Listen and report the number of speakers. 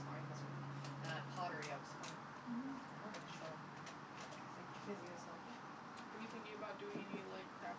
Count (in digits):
2